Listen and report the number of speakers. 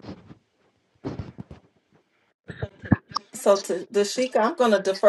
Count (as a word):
one